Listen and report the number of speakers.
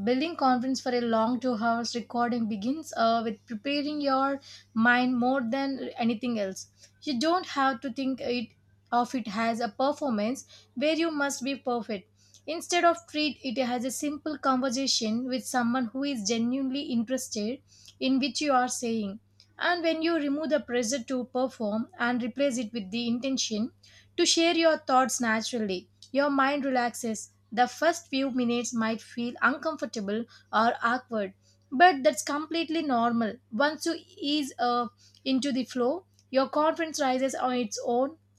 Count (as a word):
one